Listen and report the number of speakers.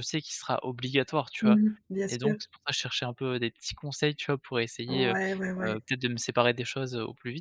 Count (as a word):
two